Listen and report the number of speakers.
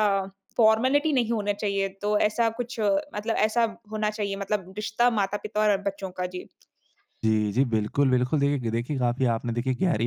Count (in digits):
2